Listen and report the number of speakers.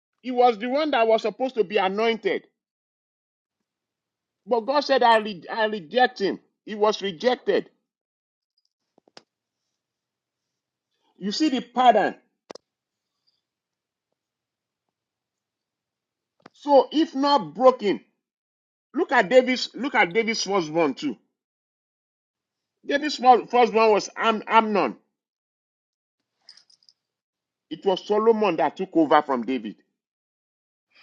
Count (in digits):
1